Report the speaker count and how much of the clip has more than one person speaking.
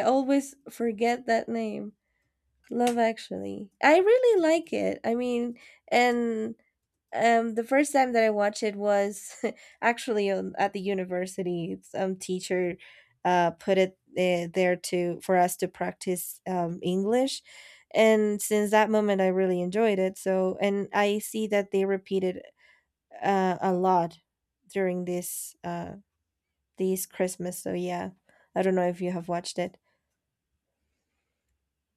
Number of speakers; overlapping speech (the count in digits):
1, no overlap